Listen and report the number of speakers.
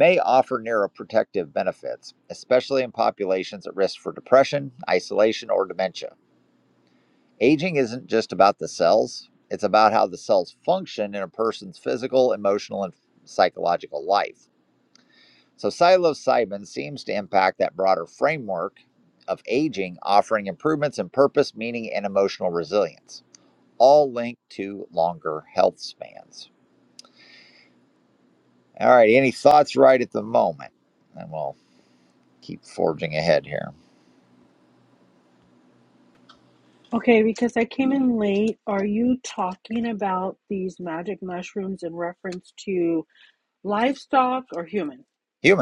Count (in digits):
2